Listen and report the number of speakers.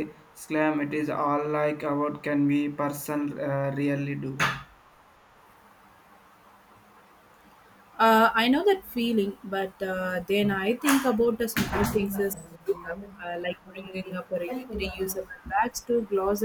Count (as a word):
two